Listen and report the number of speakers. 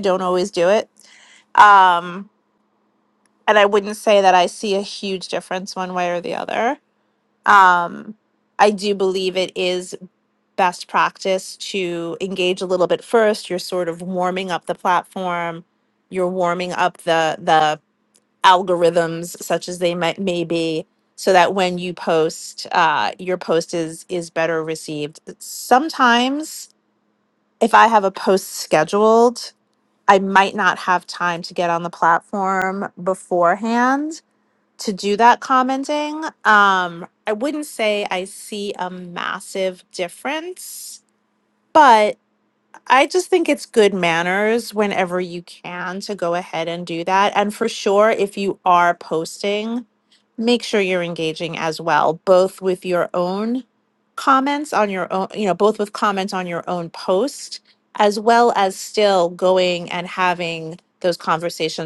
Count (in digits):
1